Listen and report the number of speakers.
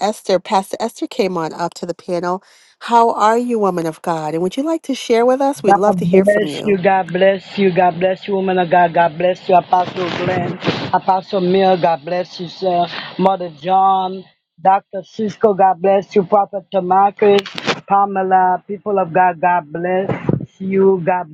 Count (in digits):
2